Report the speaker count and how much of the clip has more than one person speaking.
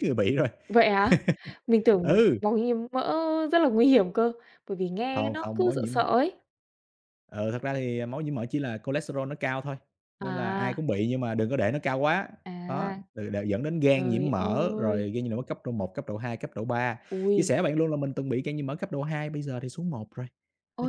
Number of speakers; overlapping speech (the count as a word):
two, about 17%